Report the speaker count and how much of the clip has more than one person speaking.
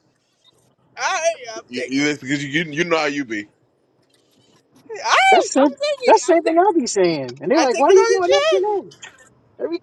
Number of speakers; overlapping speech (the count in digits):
3, about 26%